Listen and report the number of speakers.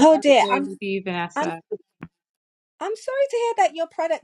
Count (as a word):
two